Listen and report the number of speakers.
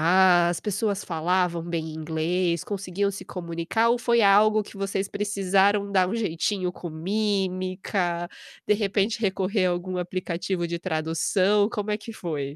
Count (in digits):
1